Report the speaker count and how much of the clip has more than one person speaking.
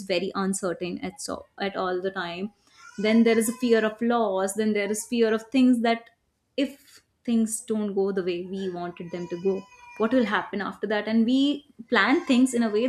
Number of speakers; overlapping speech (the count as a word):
one, no overlap